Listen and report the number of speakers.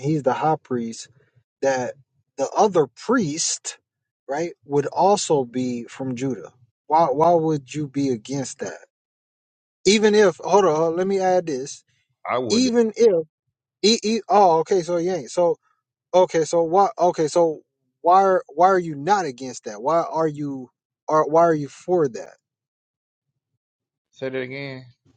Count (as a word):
two